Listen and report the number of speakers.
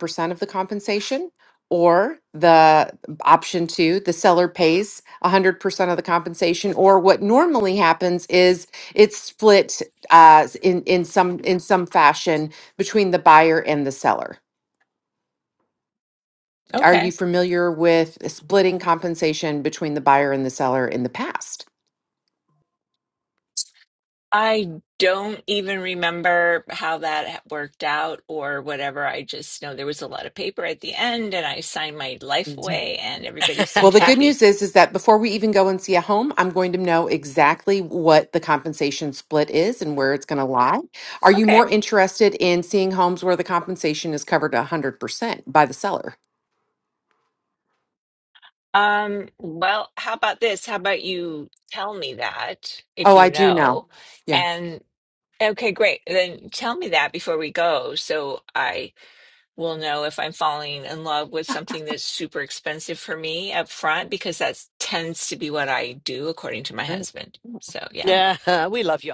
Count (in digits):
3